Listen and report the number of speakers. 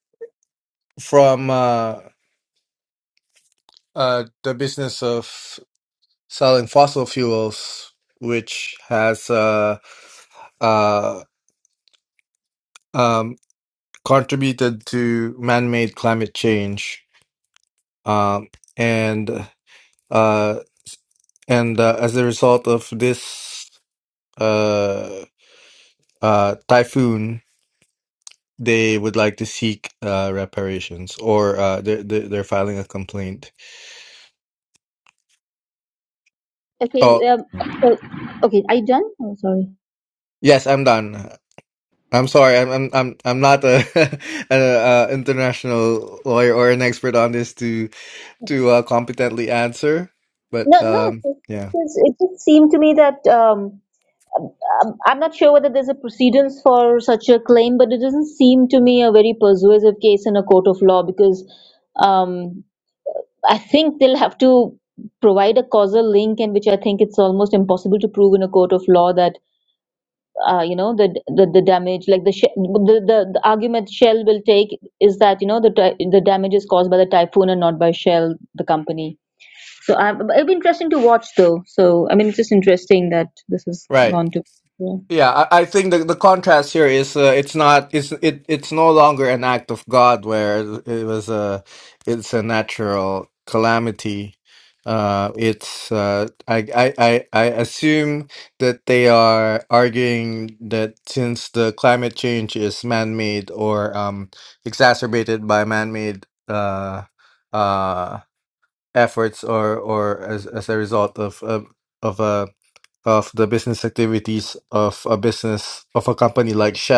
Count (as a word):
two